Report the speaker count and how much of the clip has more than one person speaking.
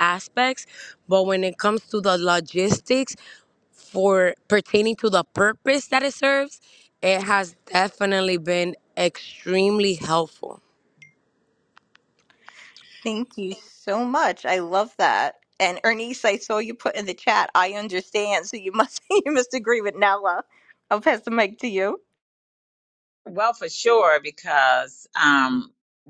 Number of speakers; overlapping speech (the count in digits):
3, no overlap